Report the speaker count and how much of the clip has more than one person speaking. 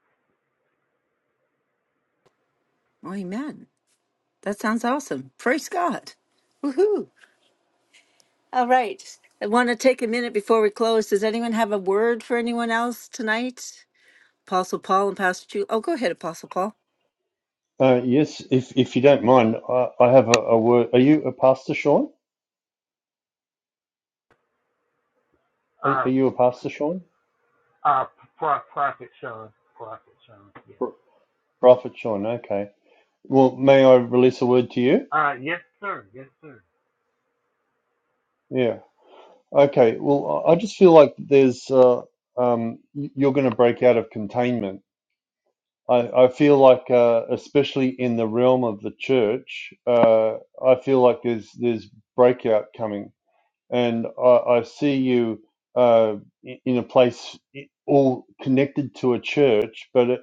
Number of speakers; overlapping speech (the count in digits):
3, about 1%